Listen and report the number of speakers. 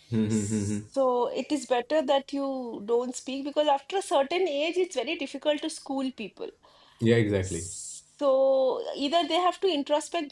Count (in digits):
2